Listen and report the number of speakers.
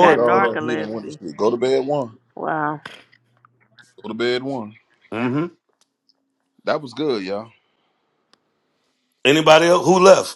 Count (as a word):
three